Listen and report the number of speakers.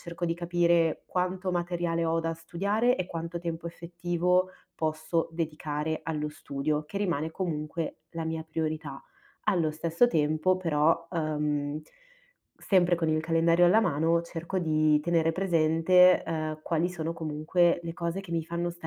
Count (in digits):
1